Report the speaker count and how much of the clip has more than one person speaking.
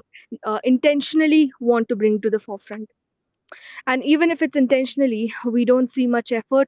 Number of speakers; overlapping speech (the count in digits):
1, no overlap